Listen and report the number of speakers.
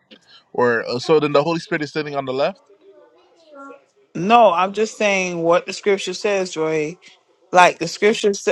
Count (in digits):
2